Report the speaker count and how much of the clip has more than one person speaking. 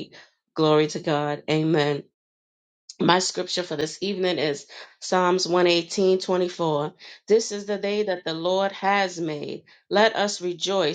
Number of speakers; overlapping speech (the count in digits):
1, no overlap